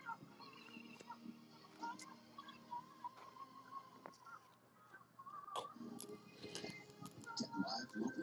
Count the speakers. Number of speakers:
0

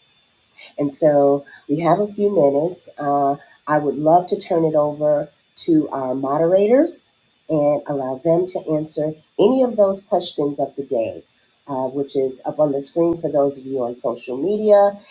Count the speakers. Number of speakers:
1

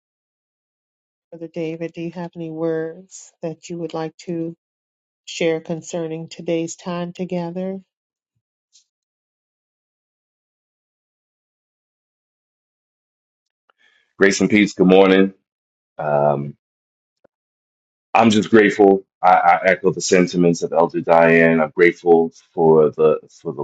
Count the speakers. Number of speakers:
2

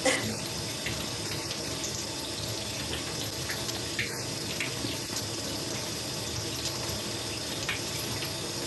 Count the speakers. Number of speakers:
0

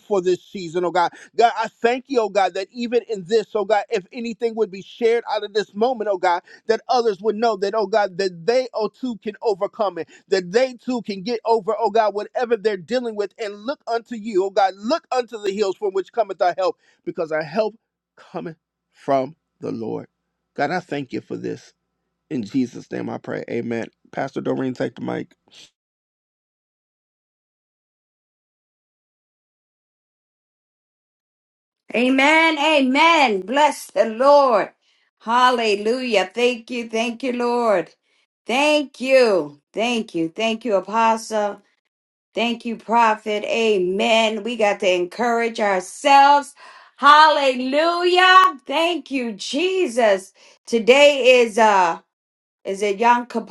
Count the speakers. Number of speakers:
2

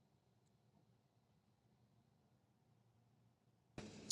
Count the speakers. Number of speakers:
0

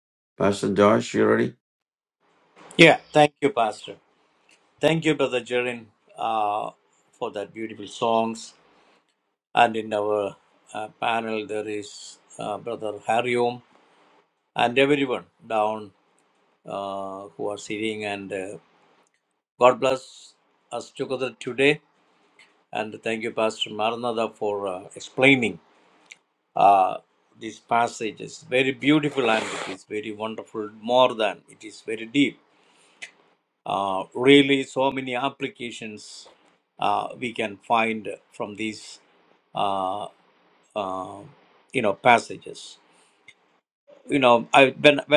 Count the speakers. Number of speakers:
2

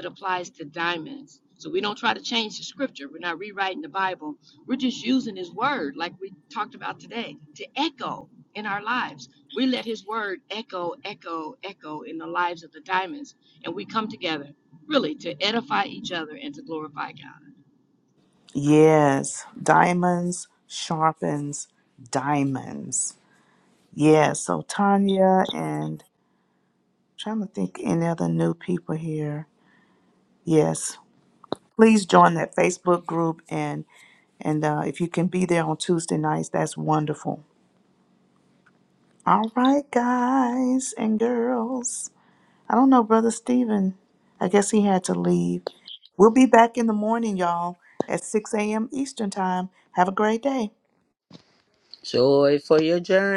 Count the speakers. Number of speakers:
3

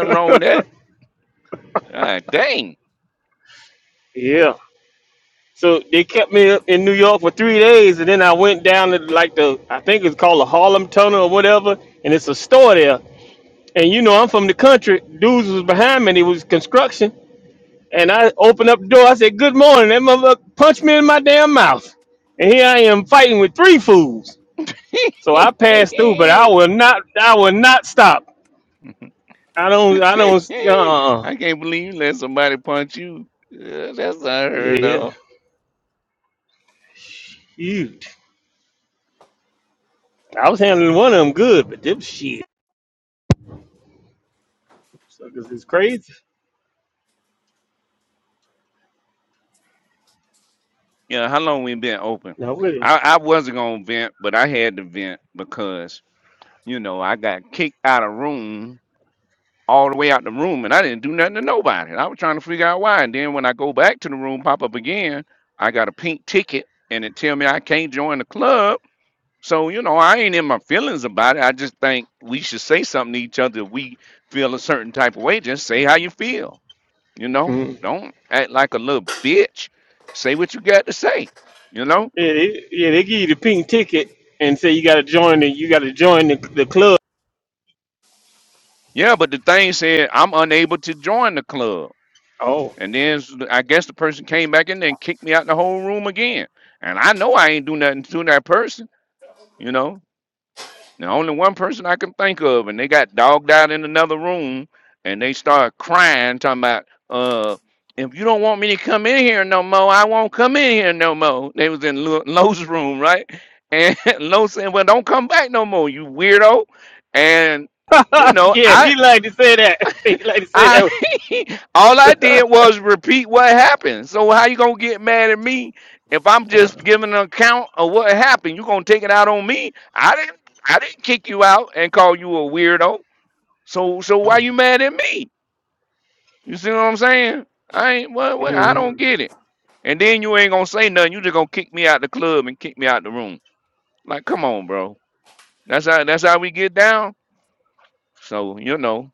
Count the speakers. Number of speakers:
2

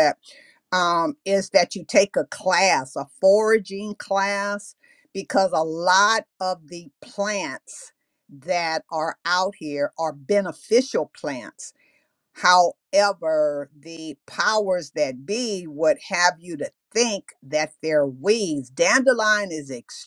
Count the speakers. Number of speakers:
1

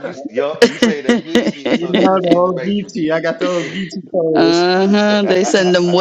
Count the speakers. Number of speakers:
3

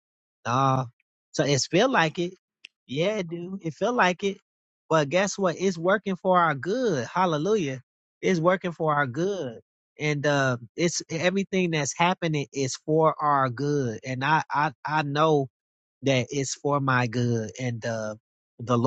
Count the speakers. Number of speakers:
1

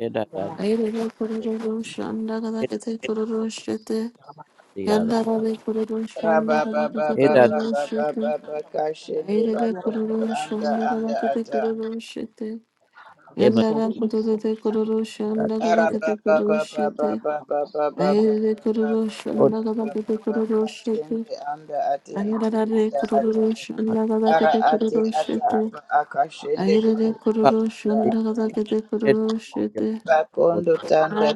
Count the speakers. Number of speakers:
3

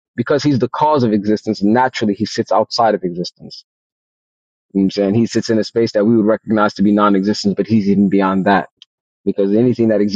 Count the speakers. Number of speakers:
1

